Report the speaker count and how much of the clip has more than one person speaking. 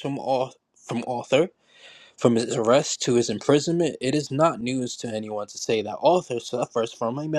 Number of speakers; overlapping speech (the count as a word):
one, no overlap